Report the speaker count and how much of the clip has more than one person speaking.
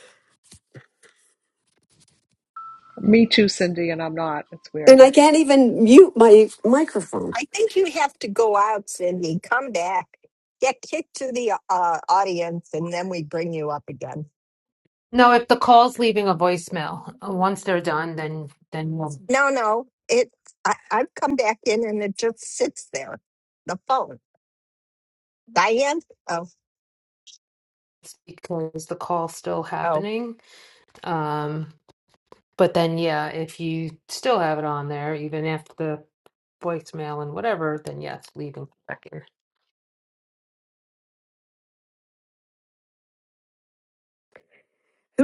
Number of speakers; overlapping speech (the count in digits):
4, about 1%